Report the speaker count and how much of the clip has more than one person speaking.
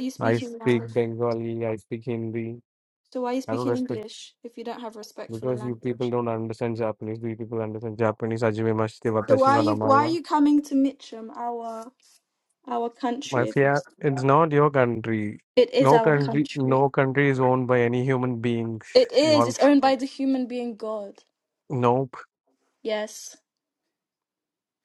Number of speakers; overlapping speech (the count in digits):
2, about 18%